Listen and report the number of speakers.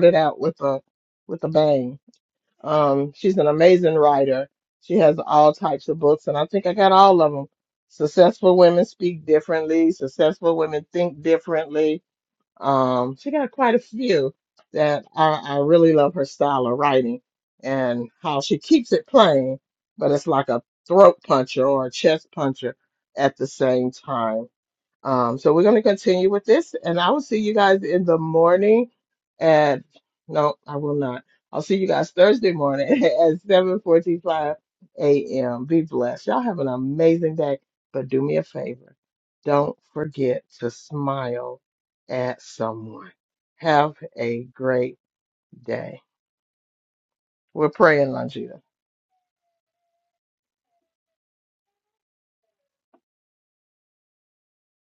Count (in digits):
1